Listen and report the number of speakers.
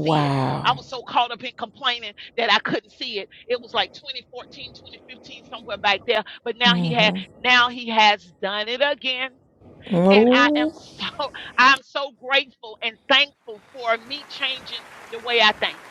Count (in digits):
2